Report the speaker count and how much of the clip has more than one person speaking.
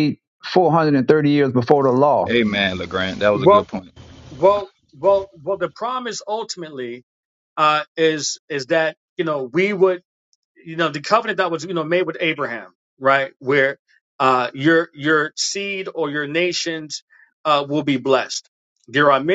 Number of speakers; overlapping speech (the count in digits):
3, about 2%